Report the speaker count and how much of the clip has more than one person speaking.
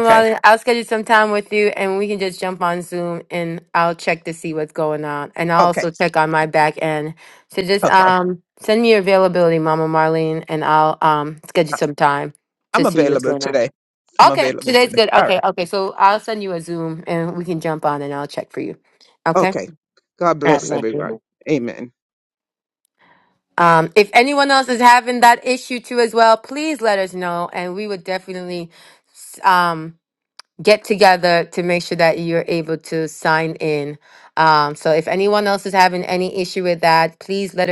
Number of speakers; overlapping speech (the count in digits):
2, about 10%